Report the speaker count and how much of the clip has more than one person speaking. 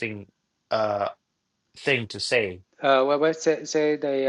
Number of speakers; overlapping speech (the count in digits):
2, no overlap